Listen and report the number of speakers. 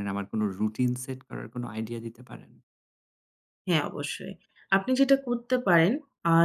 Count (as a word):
two